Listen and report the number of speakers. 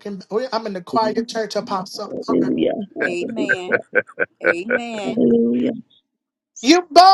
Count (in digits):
3